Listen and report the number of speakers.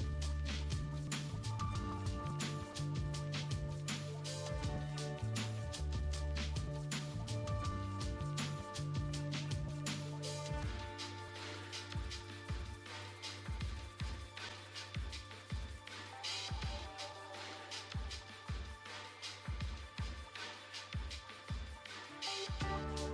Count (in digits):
0